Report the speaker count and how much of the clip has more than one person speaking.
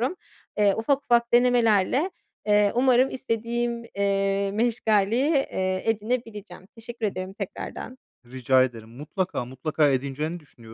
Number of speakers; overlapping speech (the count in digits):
2, no overlap